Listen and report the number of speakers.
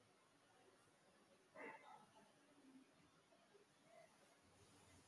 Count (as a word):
zero